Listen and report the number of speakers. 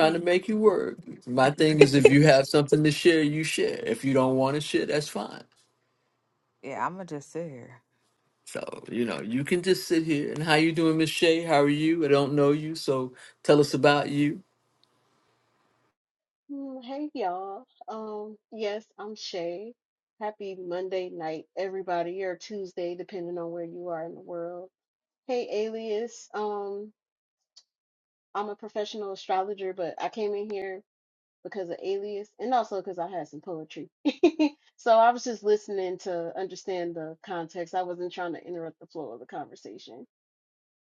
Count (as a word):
three